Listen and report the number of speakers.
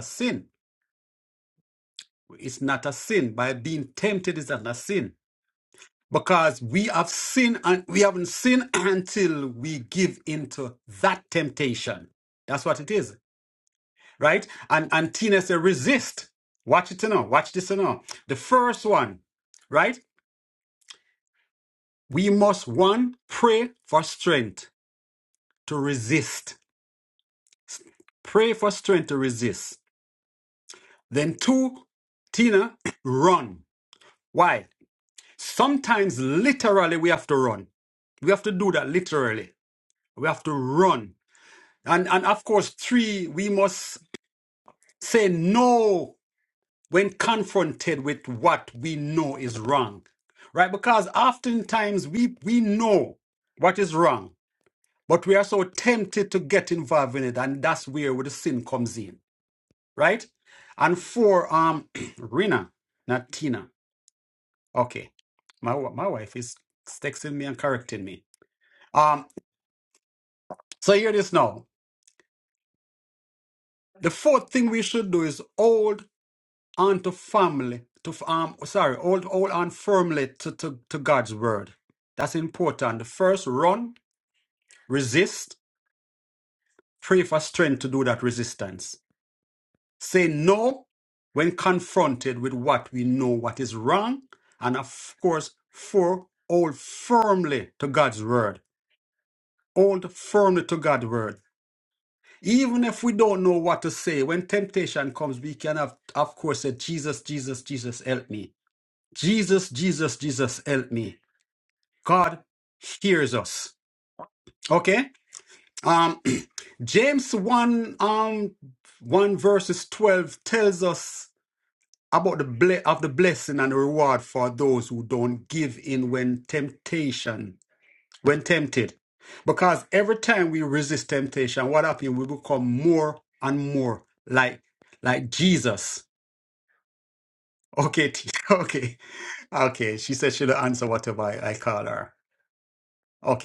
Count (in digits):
1